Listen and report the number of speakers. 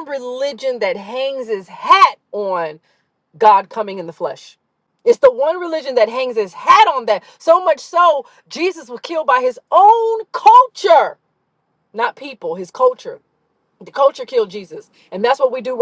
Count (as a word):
one